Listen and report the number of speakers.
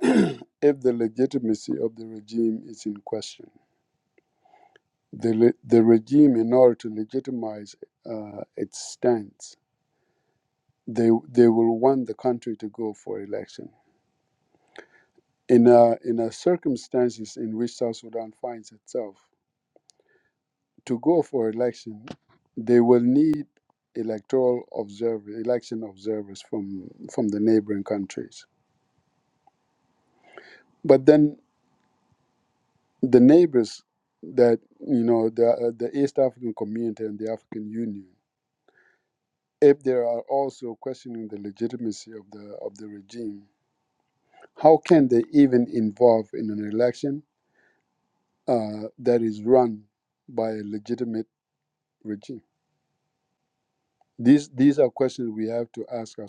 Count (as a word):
one